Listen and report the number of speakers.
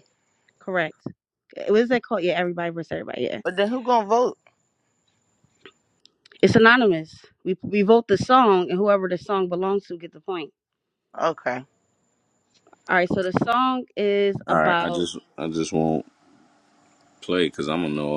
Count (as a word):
three